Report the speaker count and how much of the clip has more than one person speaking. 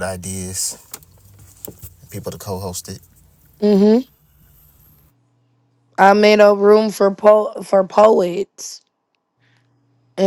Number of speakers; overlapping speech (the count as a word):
two, no overlap